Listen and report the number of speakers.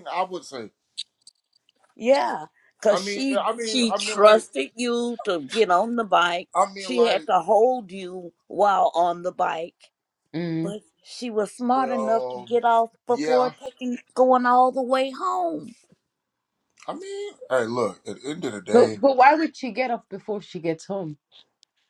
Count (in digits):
3